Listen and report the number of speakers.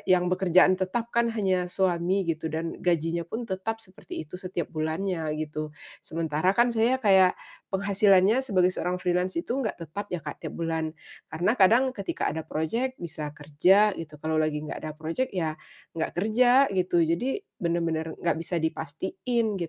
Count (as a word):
one